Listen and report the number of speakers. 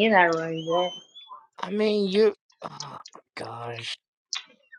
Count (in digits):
2